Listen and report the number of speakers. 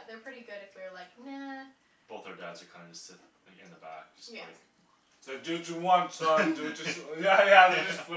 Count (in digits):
3